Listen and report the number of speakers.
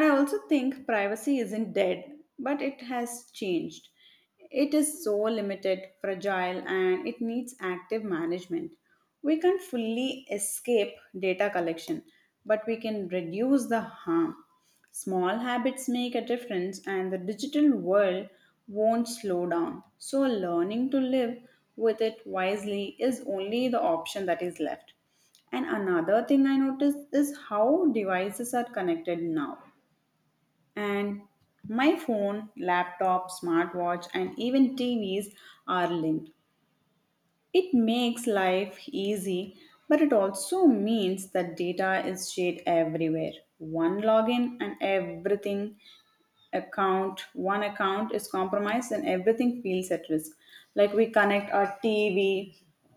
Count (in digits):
1